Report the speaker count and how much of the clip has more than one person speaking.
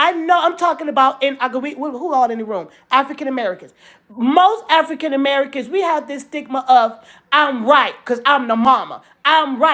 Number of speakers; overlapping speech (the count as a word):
one, no overlap